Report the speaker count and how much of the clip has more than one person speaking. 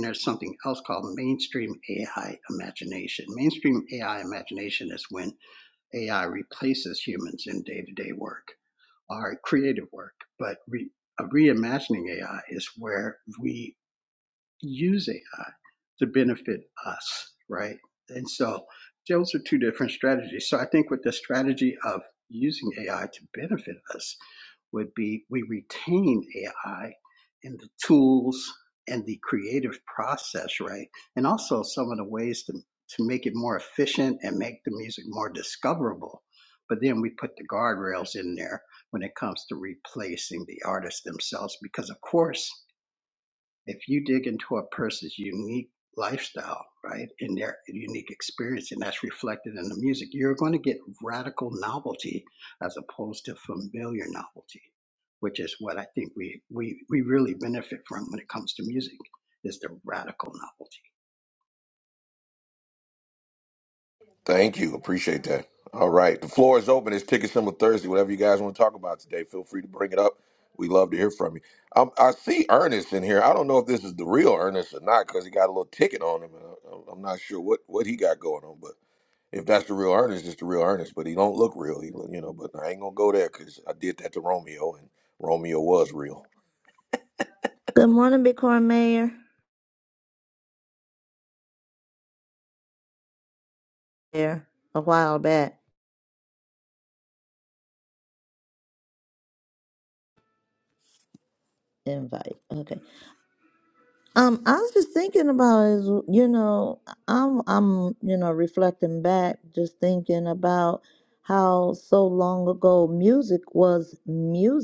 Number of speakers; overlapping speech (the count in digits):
3, no overlap